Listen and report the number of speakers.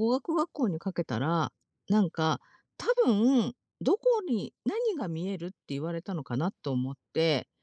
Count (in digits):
1